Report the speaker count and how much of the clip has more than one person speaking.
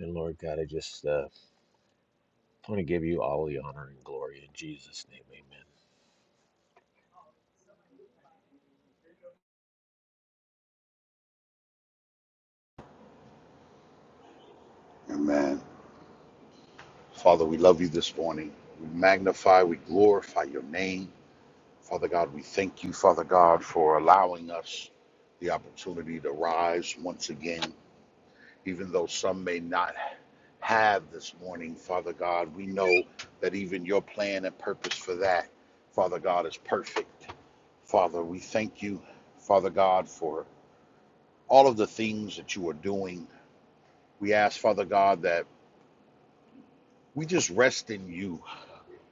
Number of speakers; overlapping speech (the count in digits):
2, no overlap